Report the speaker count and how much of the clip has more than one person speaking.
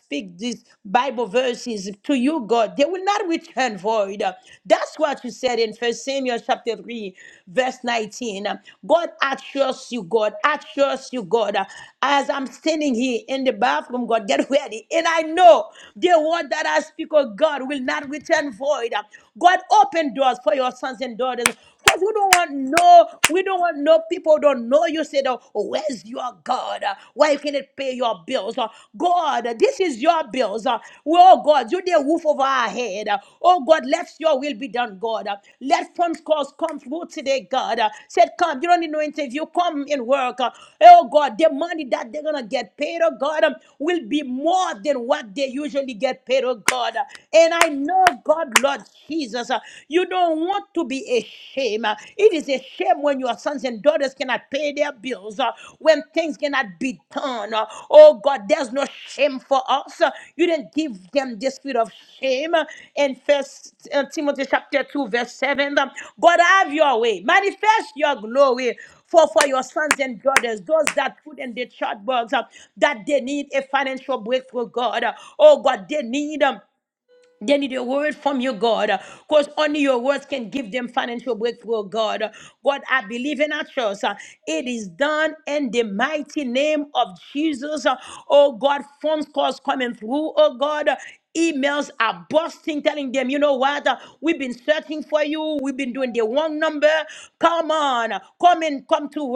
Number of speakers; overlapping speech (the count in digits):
1, no overlap